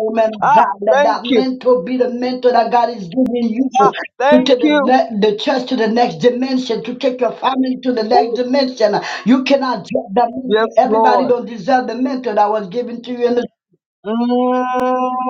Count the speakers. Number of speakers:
two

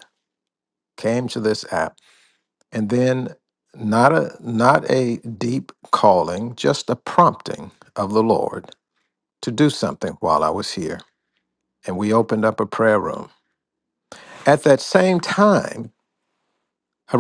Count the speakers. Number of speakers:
one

